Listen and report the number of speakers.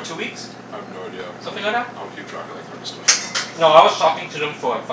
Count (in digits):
2